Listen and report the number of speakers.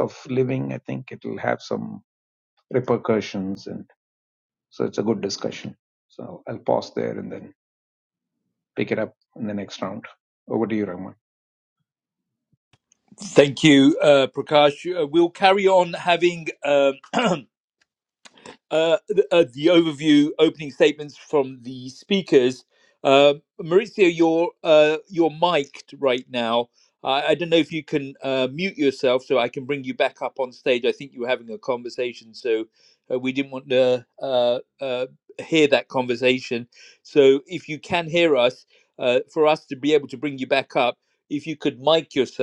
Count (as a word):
two